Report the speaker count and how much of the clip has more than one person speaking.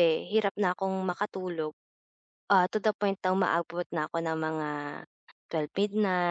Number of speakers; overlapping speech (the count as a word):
one, no overlap